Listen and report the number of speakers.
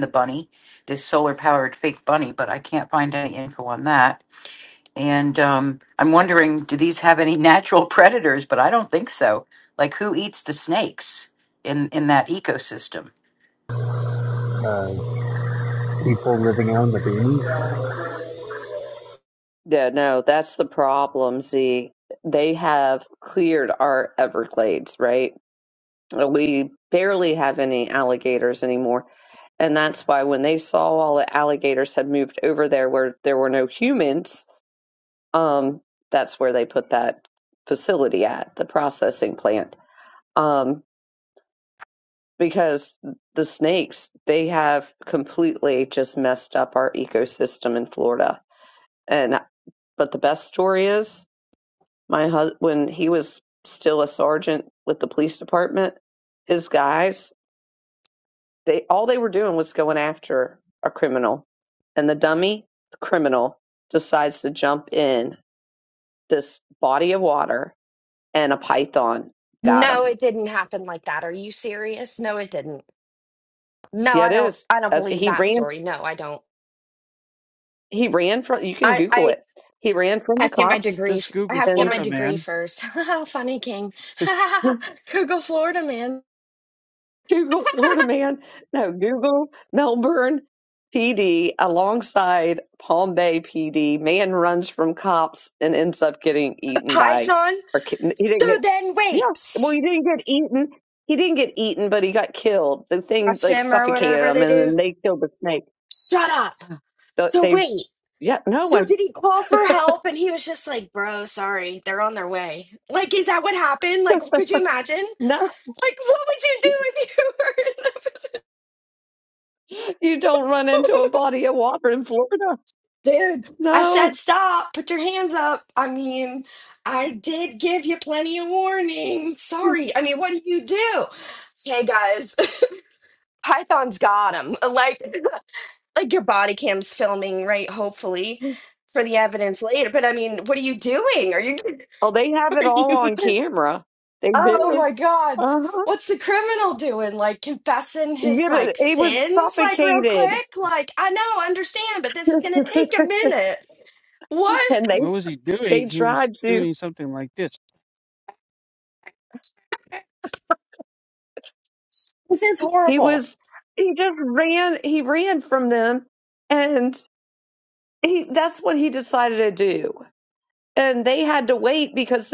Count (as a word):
five